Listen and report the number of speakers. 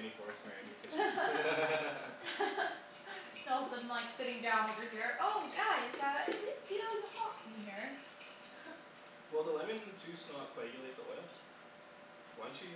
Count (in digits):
2